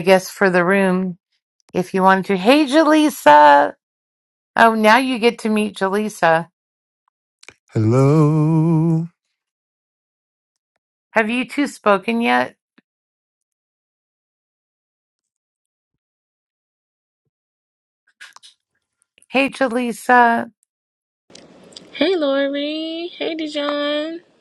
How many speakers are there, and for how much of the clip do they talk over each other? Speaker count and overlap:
3, no overlap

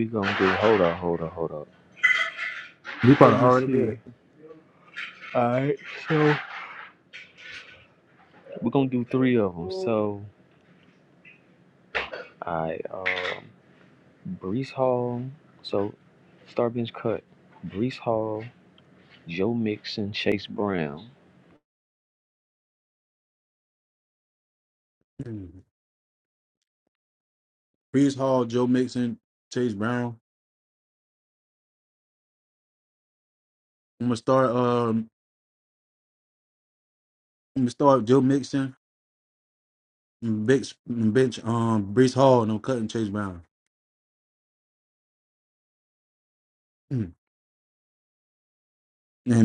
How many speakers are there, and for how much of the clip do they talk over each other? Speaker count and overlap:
2, about 2%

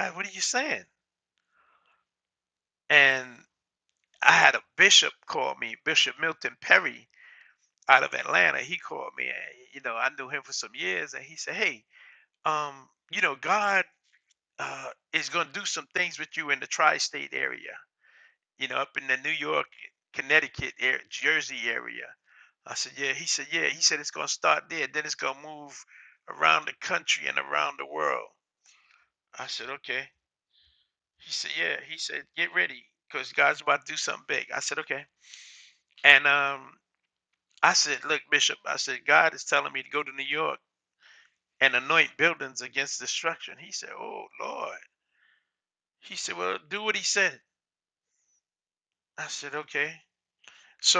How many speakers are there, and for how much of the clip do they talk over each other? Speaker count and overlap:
1, no overlap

